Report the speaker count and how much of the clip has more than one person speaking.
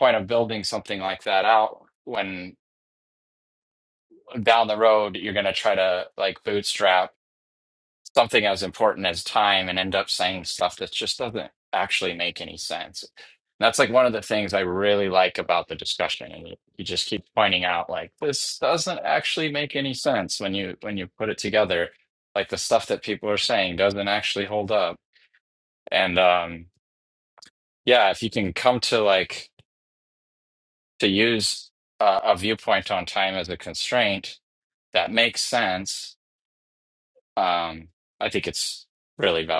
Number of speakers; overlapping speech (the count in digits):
1, no overlap